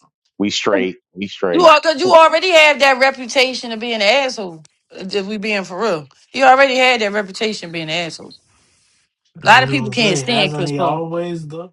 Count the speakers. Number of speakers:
3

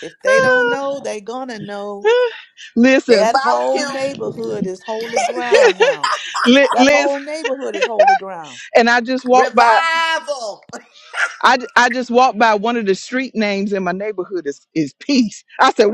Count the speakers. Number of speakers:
3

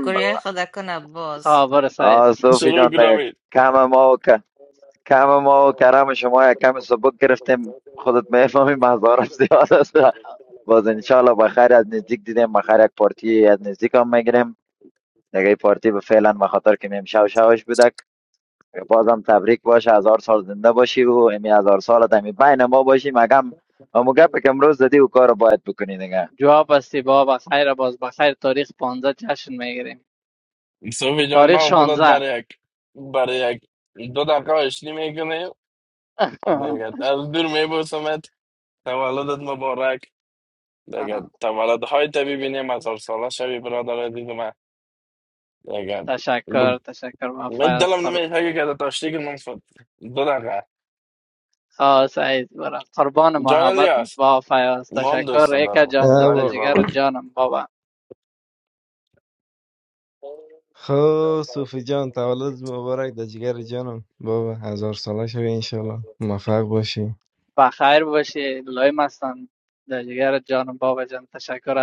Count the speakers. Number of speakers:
5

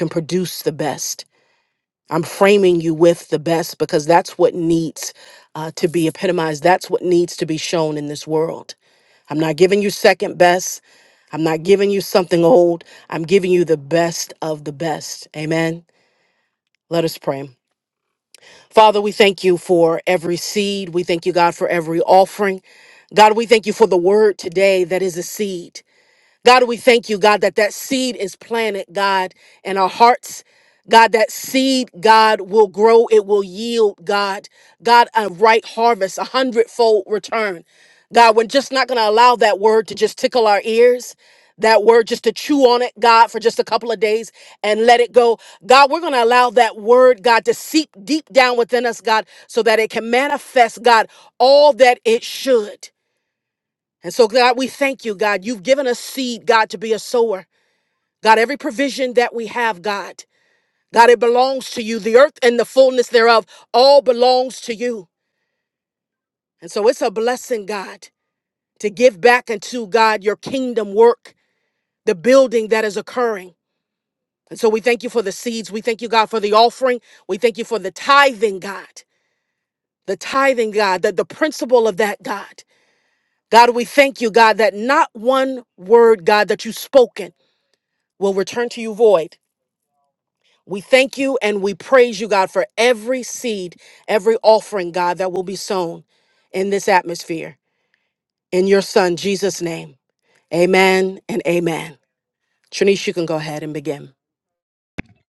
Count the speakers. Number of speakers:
1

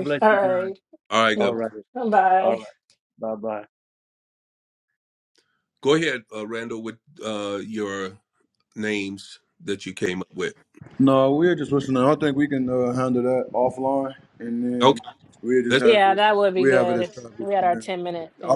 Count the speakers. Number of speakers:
4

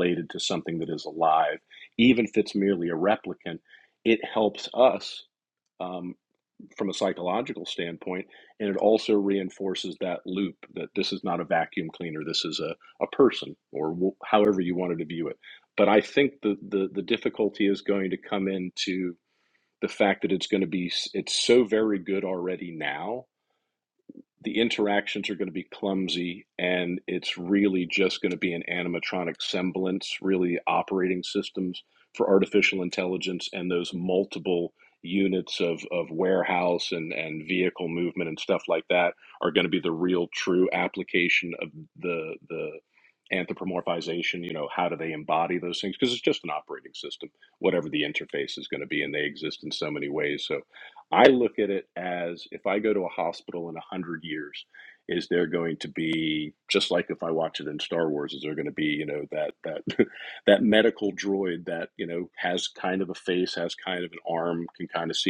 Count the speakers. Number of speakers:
1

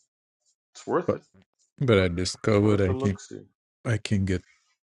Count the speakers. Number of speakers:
2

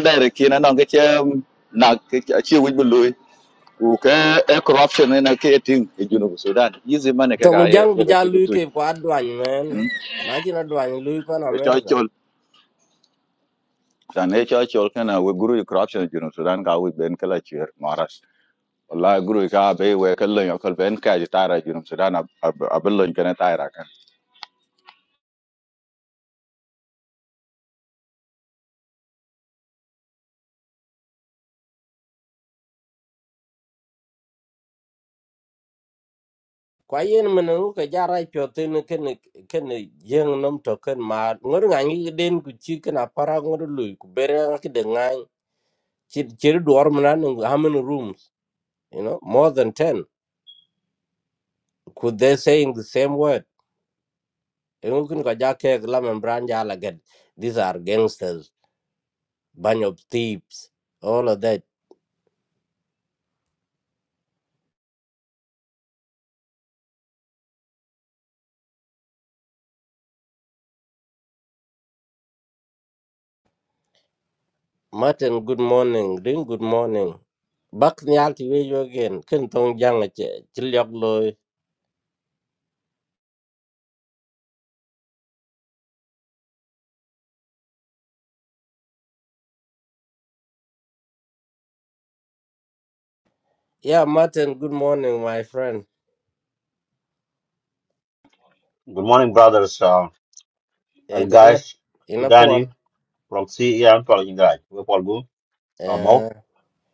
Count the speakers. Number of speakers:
3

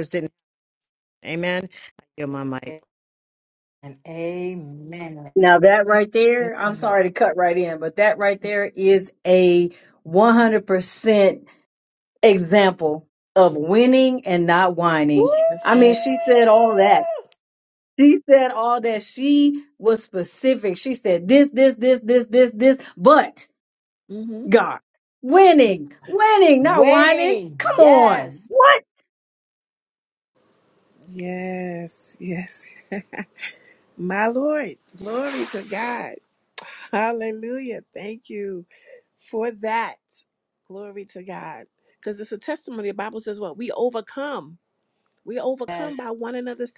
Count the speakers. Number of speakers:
4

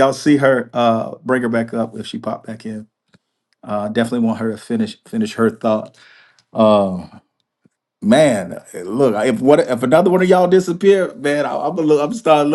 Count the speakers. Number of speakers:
1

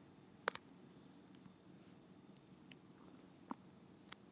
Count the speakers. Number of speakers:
0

